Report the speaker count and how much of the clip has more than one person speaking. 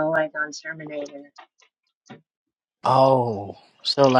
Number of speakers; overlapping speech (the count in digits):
2, no overlap